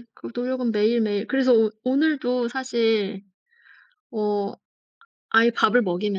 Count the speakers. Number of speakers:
one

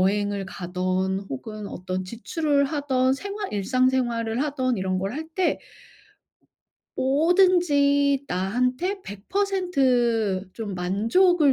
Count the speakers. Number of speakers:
one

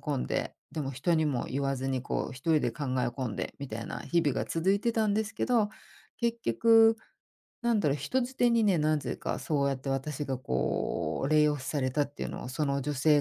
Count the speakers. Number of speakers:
one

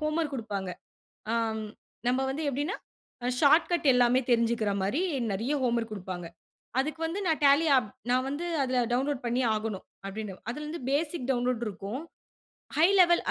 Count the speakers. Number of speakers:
one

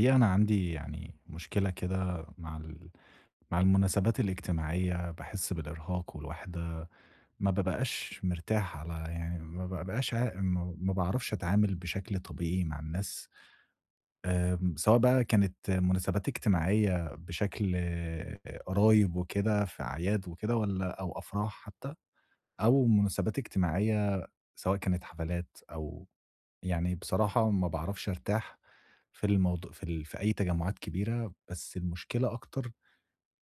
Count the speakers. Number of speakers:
one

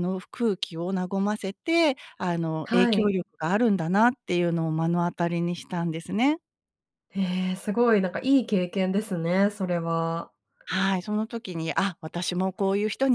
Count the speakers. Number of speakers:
two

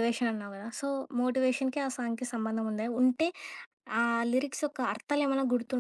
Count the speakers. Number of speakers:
one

